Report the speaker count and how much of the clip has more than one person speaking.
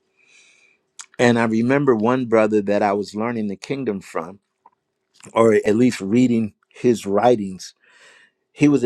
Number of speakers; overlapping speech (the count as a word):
one, no overlap